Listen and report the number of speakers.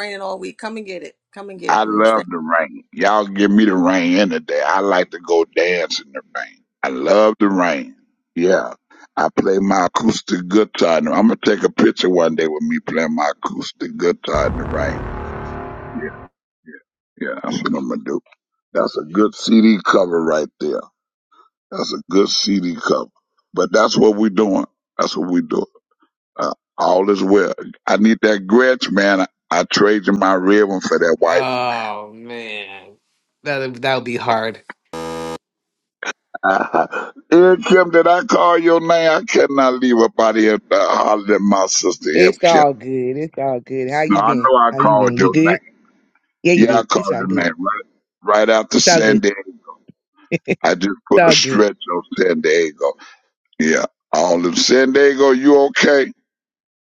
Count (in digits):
4